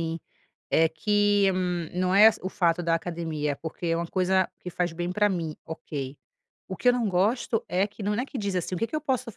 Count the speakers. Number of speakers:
one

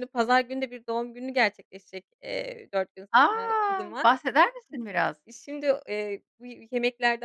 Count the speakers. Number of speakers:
two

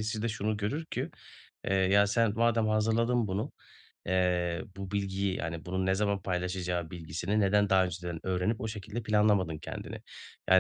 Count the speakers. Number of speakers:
one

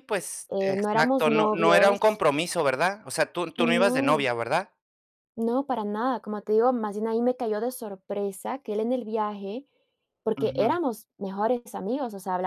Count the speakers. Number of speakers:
two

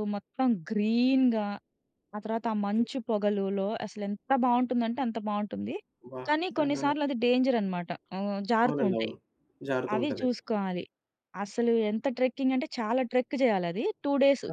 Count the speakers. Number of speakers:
two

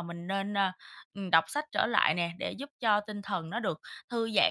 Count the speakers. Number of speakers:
one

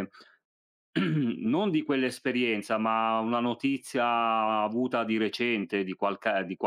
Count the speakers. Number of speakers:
one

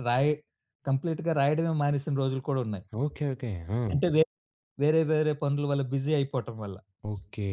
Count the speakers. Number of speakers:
two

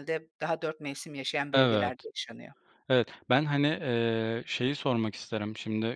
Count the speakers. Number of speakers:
two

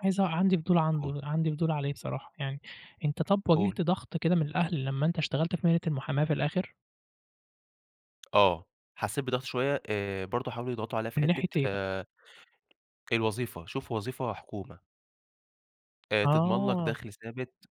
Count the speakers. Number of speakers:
two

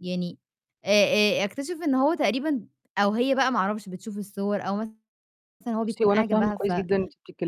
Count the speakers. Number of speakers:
two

